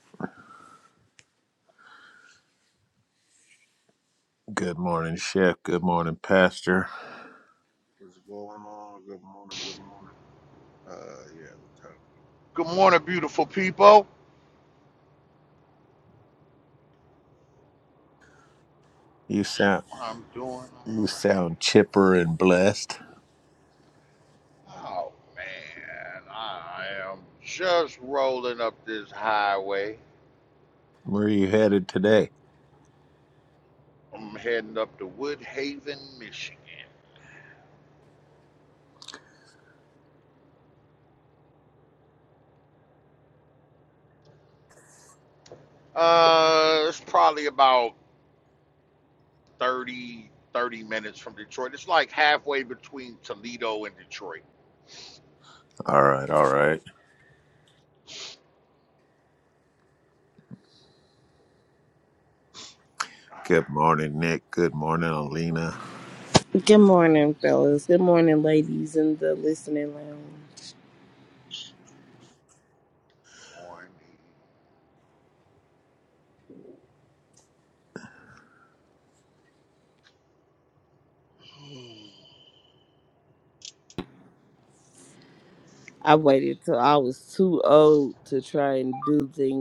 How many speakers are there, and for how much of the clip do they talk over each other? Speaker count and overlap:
4, about 1%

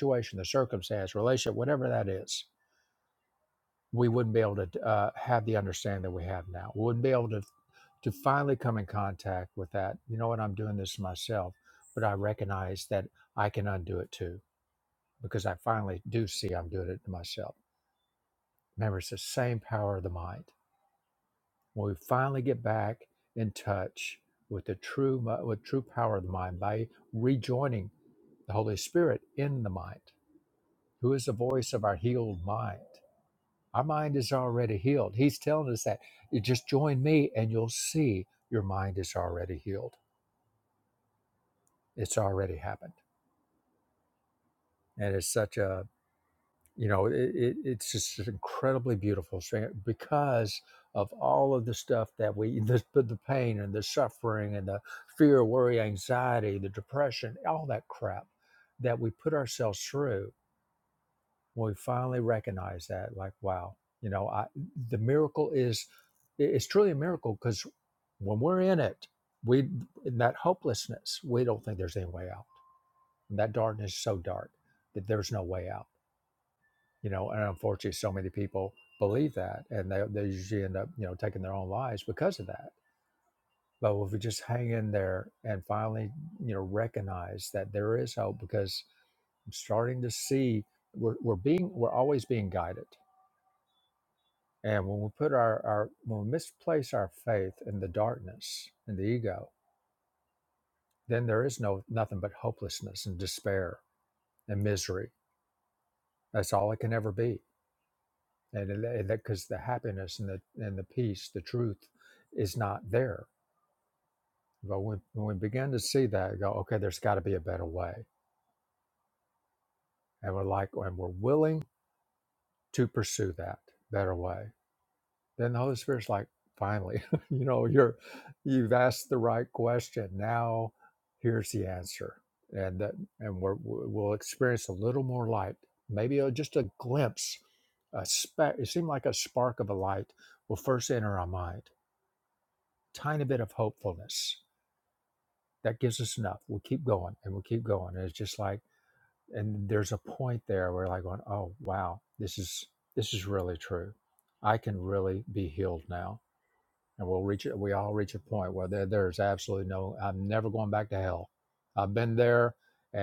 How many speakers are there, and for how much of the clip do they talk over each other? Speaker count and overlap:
1, no overlap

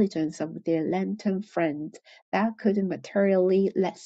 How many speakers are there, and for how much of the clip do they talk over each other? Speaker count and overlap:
1, no overlap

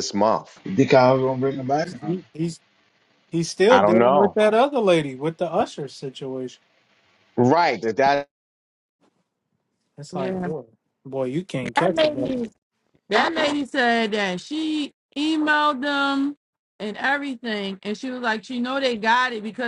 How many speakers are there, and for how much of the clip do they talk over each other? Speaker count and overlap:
4, about 9%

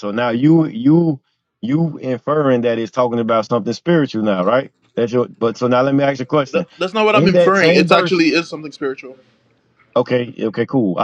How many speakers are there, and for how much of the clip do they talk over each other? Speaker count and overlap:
2, about 10%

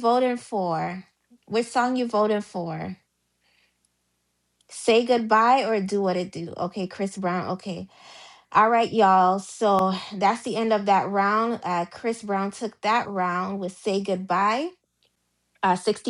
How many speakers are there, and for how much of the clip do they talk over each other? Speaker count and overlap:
1, no overlap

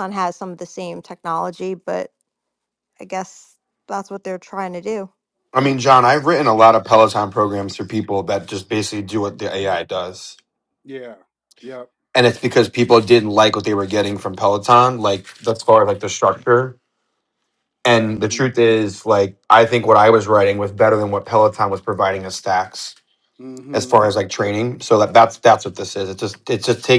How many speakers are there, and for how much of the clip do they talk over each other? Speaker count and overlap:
3, about 3%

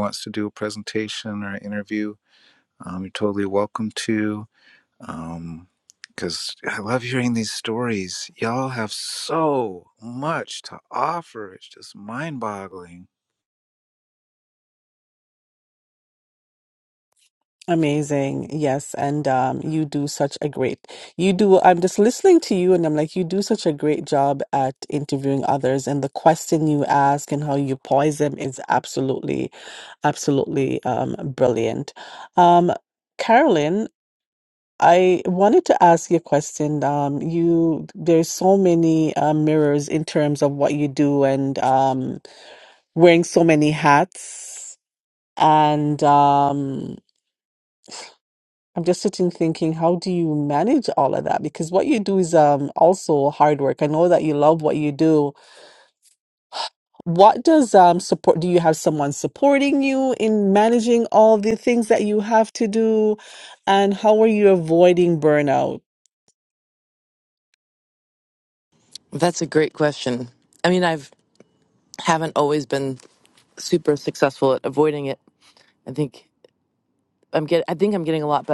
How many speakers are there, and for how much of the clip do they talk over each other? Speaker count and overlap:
3, no overlap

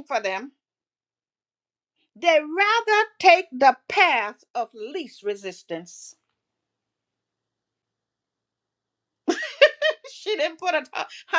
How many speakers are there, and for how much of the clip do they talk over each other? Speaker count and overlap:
1, no overlap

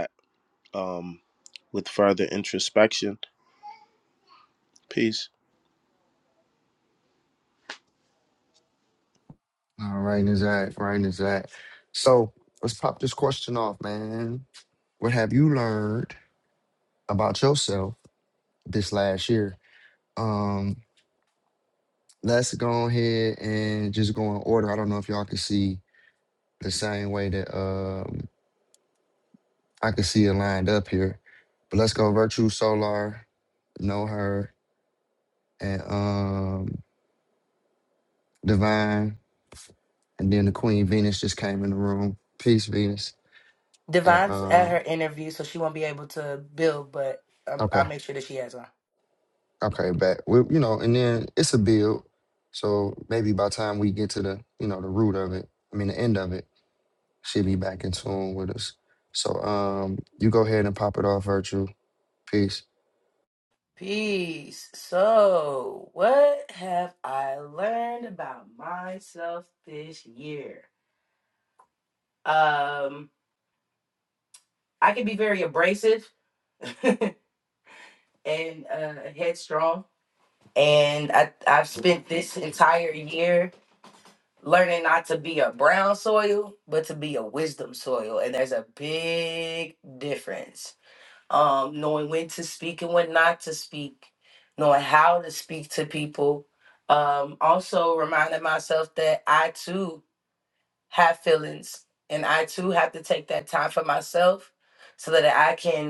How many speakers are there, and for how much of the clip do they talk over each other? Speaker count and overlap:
3, about 1%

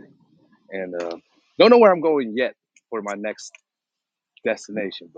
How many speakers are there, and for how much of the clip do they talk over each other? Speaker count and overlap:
1, no overlap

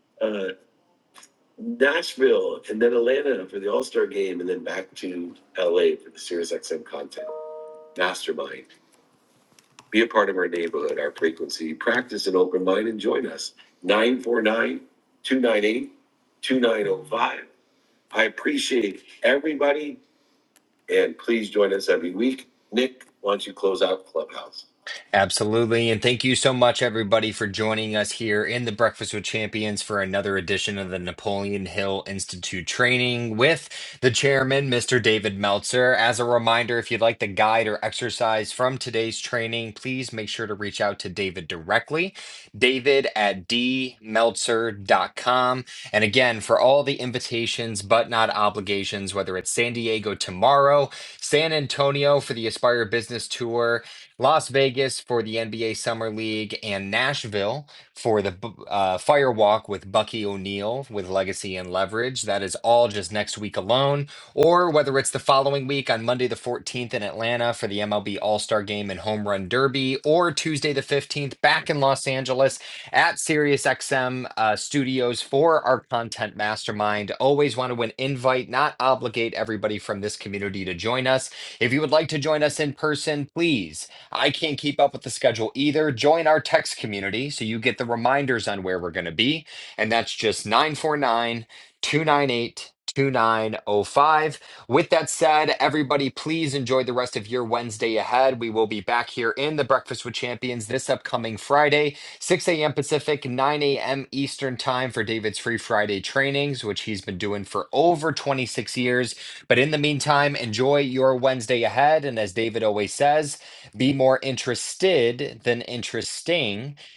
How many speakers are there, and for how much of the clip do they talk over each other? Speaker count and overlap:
2, no overlap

